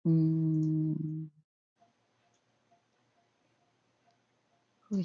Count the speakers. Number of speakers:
one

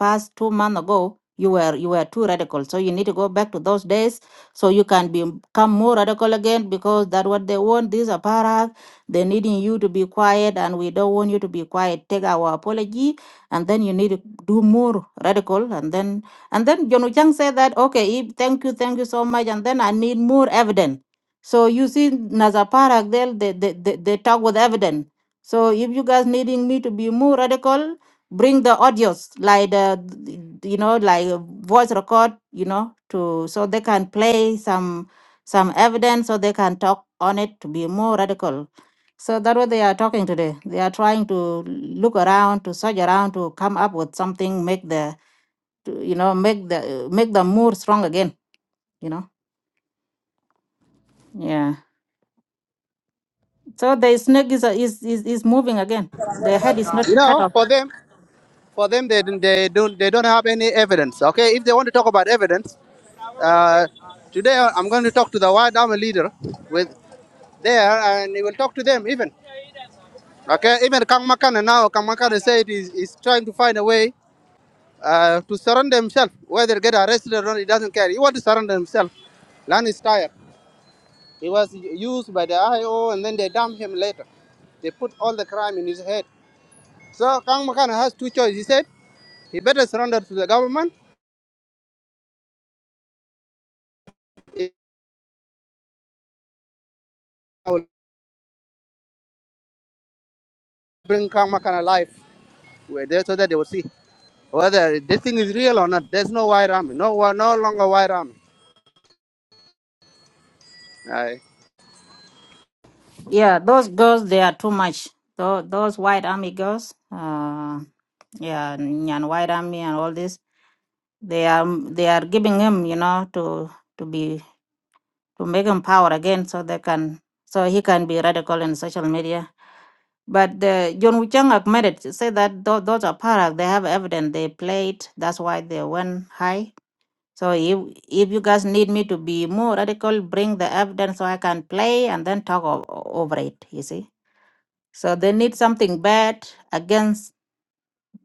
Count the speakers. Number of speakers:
two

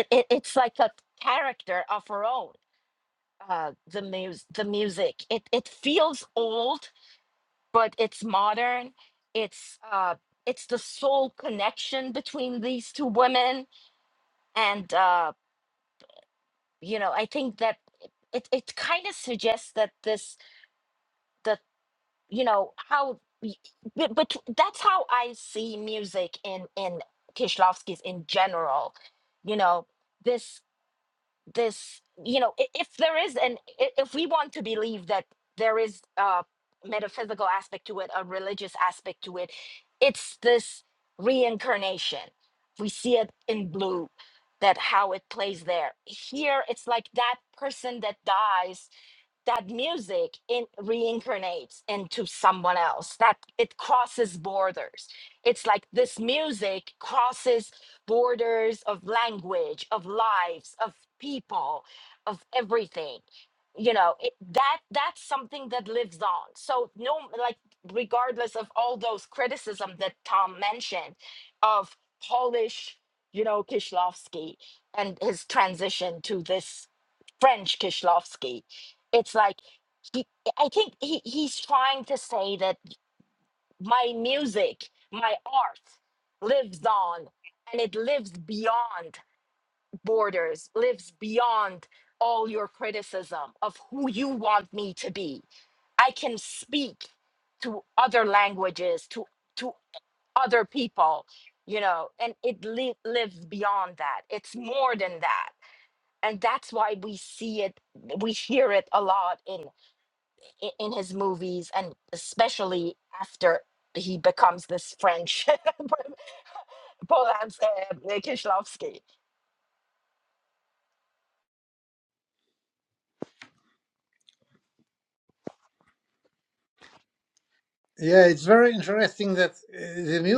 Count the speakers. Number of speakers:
two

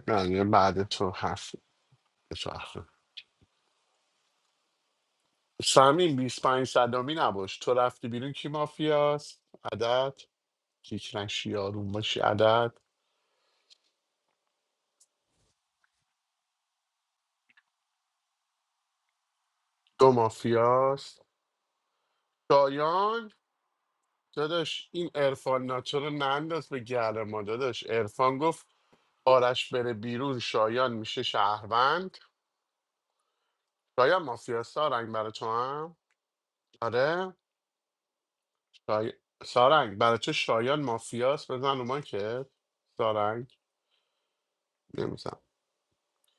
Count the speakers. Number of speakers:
one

